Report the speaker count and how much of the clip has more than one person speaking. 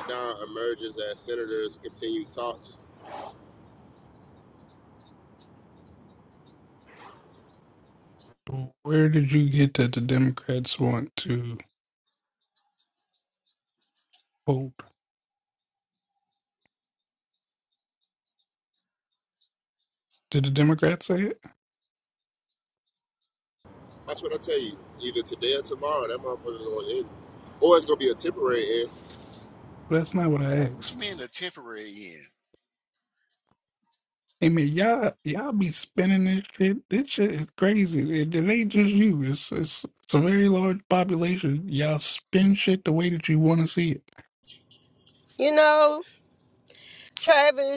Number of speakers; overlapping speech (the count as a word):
four, under 1%